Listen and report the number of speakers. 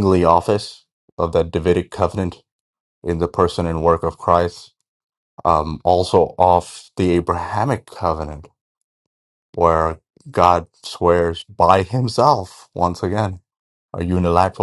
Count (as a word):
one